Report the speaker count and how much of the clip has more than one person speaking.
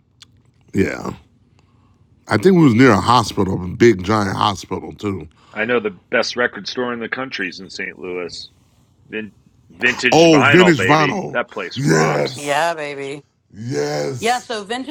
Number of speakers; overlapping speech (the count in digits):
3, about 13%